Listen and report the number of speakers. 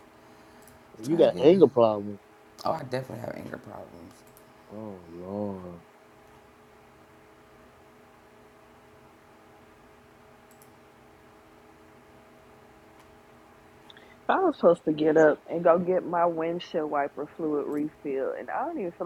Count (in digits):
3